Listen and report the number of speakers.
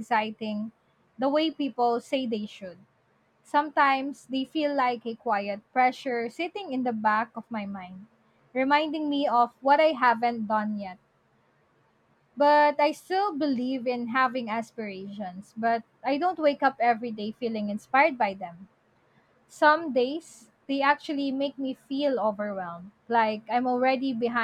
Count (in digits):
1